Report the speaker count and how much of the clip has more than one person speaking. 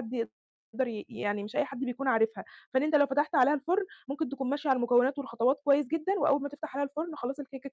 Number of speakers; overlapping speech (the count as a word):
one, no overlap